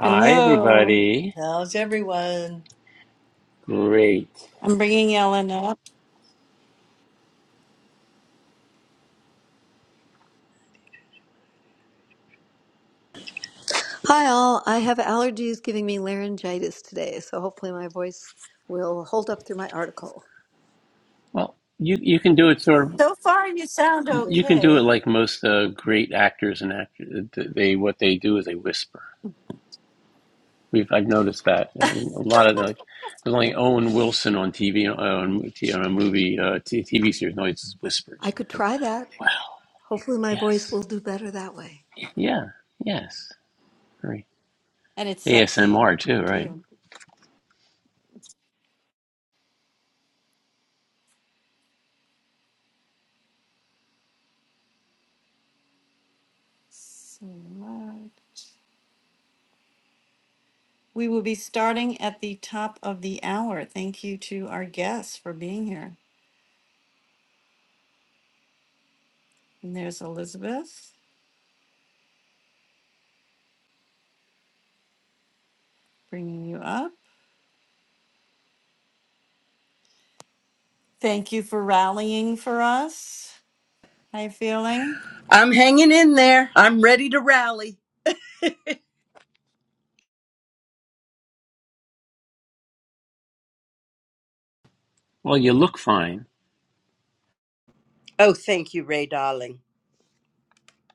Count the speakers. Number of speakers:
5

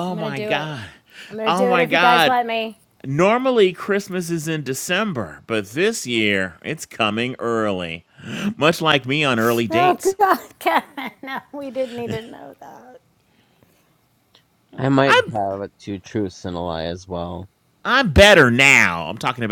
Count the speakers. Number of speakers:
3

